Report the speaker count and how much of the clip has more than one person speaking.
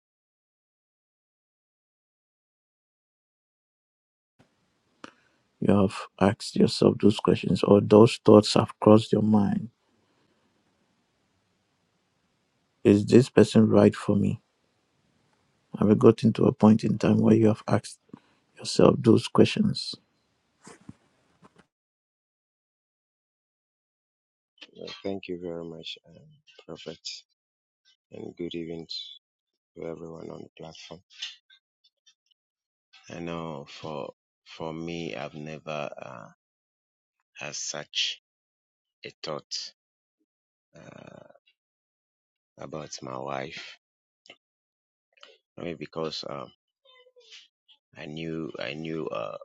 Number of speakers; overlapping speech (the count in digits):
2, no overlap